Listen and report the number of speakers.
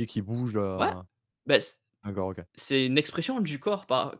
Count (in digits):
2